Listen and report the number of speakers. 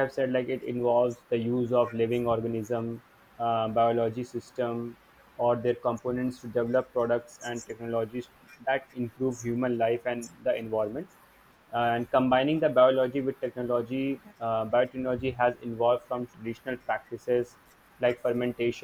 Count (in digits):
1